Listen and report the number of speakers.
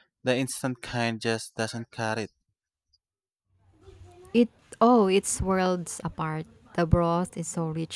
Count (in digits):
2